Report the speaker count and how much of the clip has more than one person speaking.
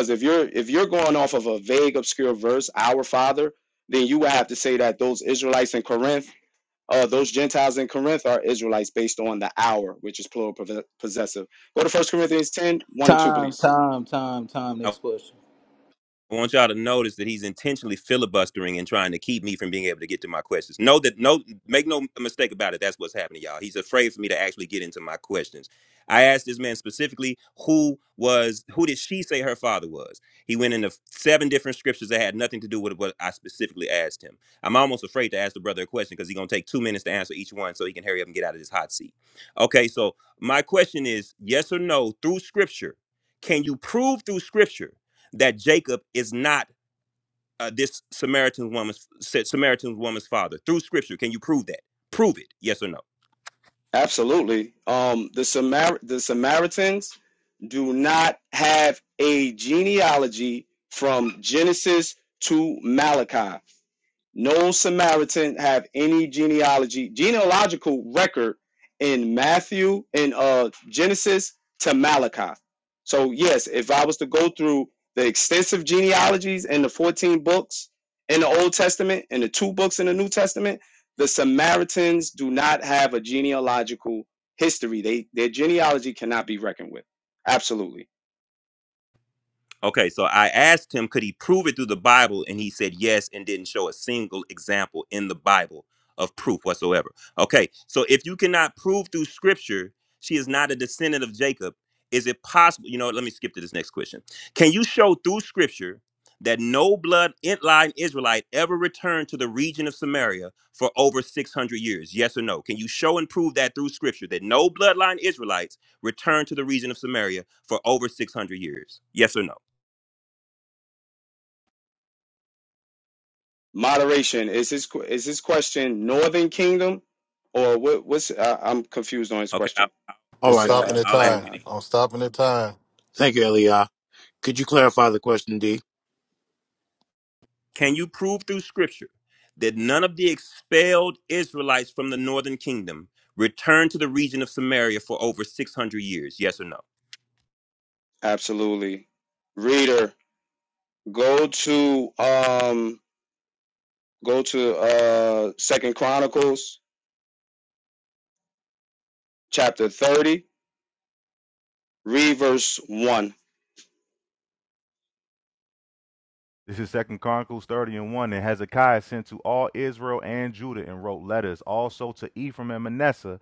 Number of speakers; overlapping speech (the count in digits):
6, about 1%